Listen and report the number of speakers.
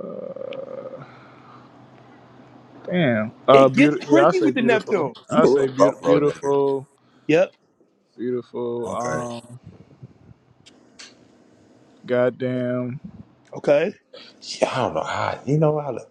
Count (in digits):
3